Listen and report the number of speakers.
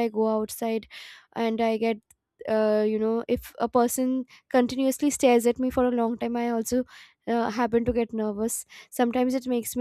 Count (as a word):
one